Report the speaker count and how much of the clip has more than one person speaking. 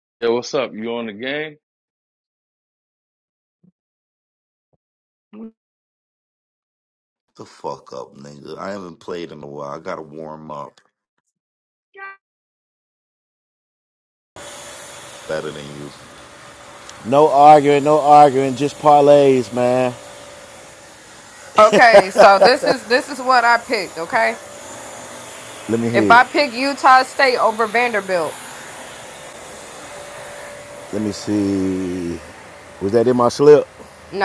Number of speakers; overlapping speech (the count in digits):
4, about 1%